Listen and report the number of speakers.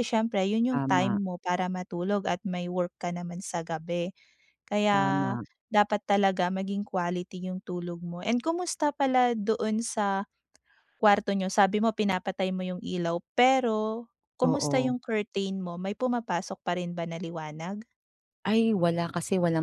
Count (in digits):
2